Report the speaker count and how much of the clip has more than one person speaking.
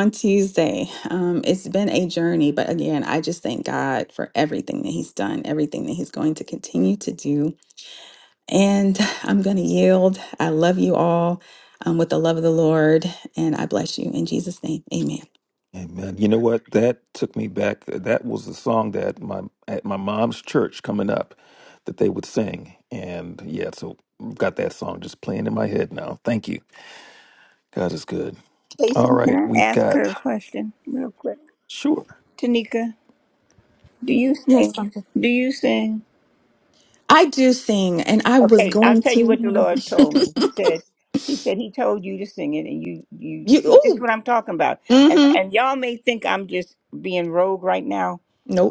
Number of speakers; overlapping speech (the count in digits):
3, about 8%